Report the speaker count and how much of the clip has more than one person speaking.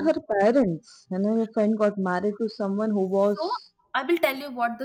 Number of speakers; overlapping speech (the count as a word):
two, about 1%